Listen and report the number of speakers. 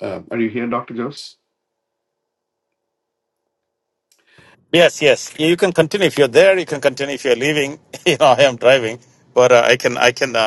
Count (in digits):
2